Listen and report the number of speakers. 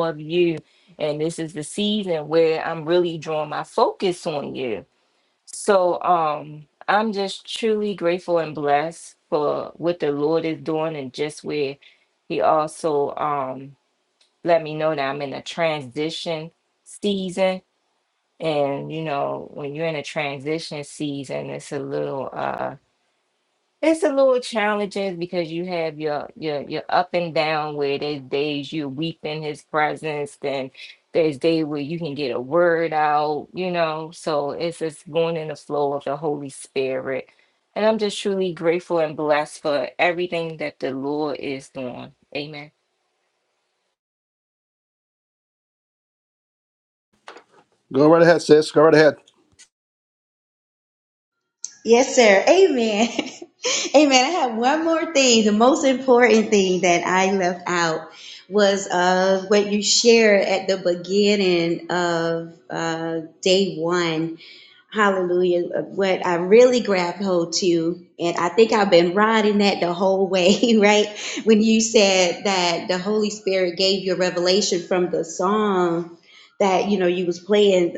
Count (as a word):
three